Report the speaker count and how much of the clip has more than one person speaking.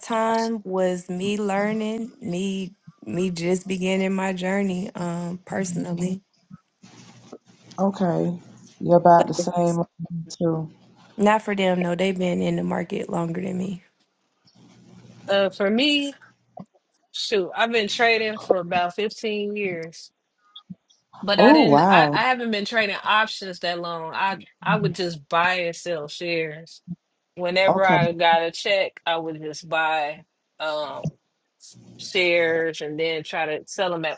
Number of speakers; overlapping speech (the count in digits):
3, about 4%